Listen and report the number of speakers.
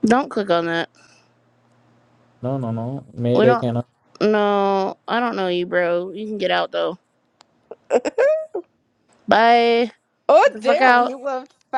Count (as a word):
three